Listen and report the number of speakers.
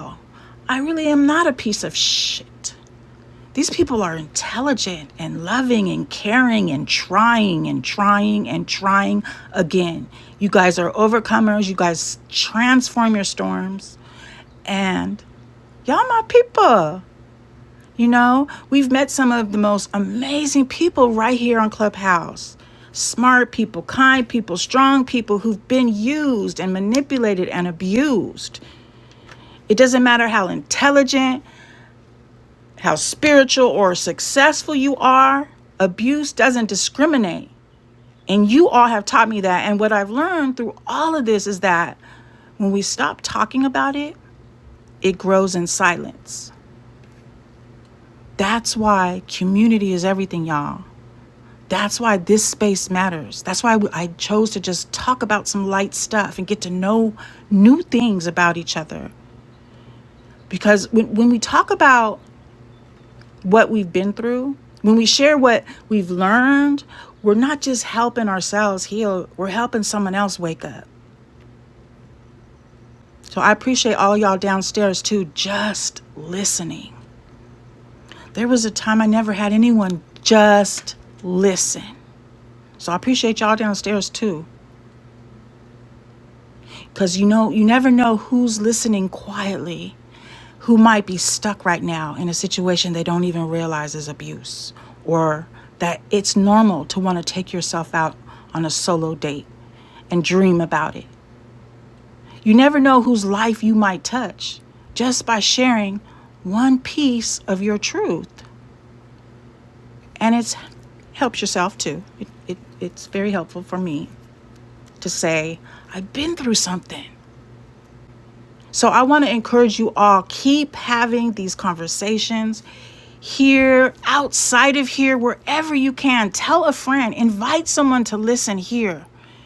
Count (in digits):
1